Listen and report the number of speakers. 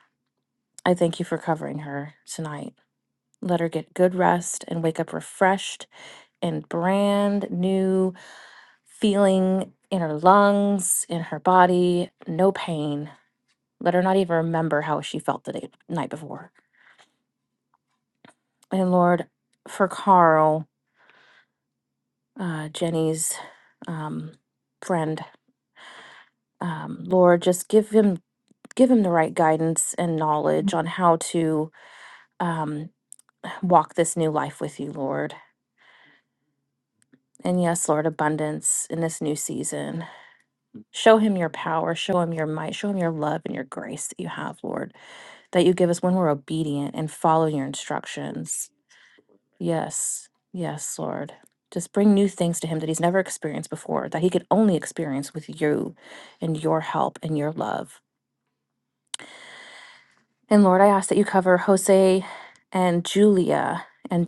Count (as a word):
one